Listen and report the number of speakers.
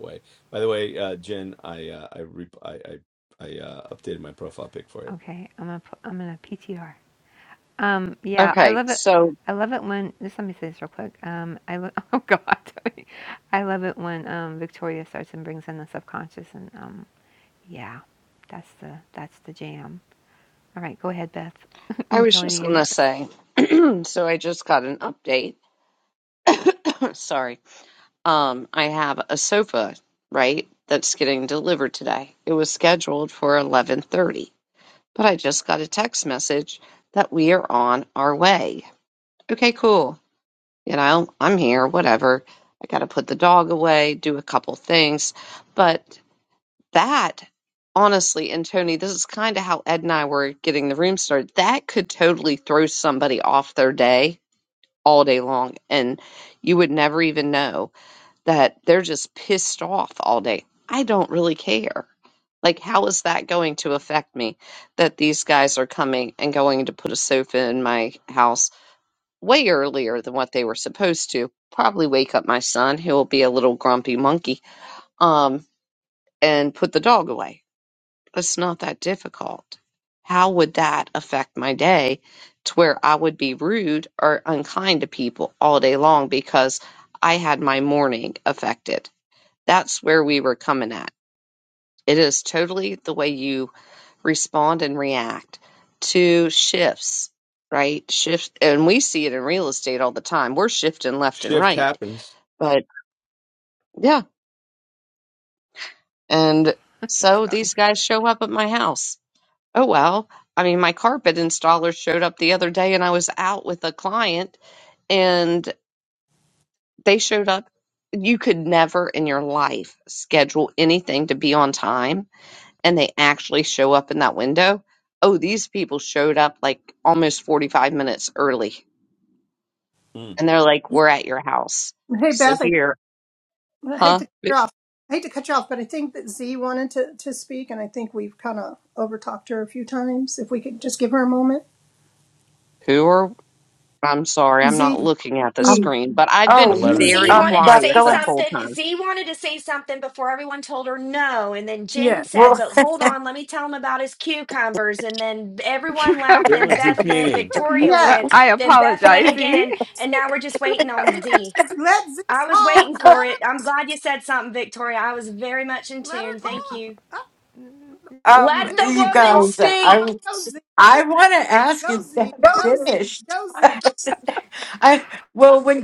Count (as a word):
six